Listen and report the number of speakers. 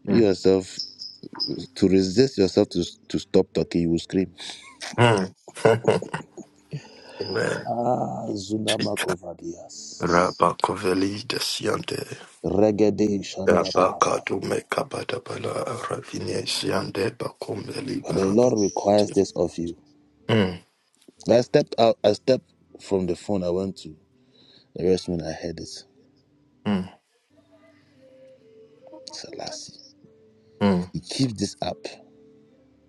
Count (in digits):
2